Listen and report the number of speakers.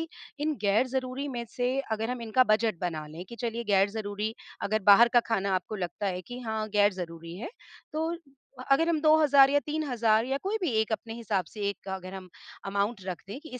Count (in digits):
1